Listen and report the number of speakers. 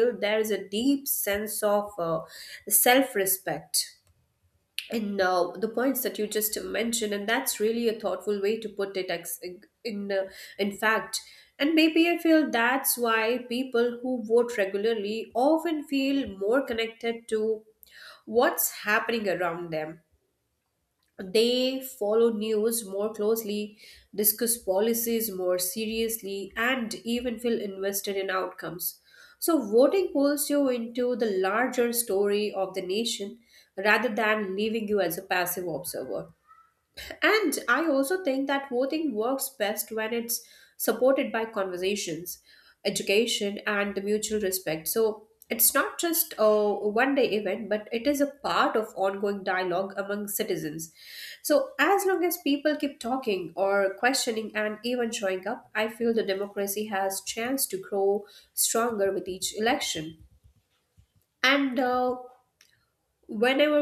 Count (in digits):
1